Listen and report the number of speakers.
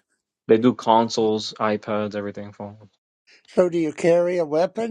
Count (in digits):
2